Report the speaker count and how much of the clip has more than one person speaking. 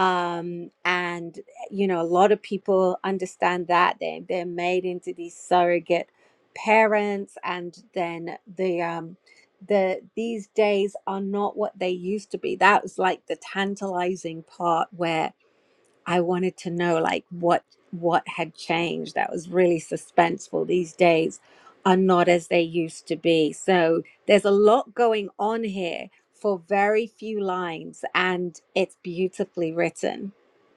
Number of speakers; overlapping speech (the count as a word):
one, no overlap